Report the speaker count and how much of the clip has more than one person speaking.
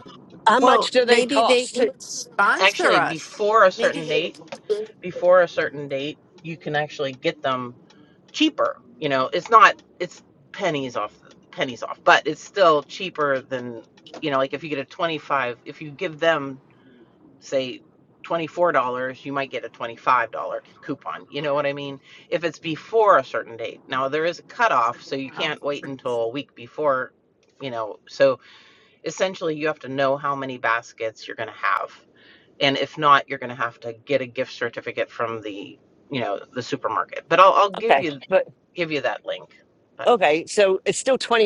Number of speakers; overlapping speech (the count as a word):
three, about 6%